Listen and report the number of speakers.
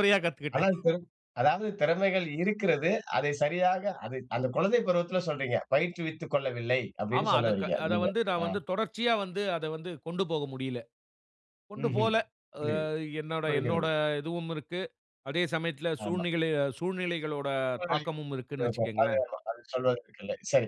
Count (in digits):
2